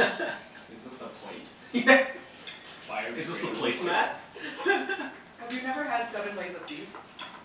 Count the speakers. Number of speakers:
3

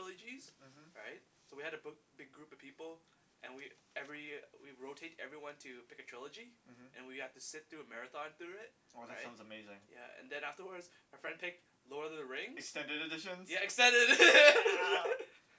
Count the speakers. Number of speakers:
2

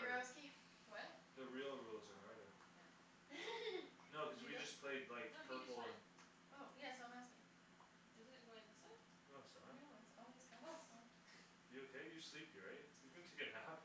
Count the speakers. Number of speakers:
3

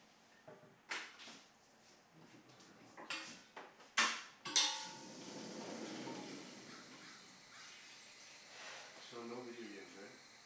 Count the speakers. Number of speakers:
1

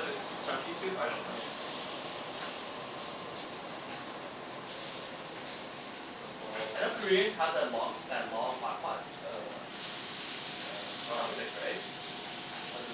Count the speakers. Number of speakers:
2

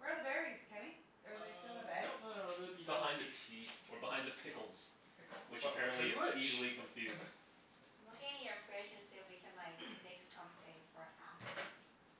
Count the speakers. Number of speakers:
4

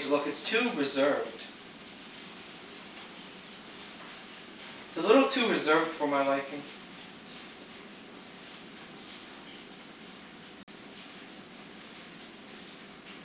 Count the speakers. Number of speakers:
1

